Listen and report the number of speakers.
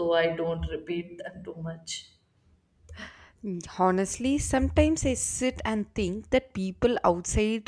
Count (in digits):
2